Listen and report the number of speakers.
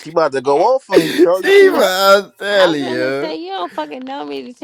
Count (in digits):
3